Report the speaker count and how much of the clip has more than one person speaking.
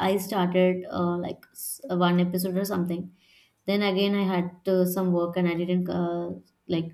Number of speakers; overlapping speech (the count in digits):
1, no overlap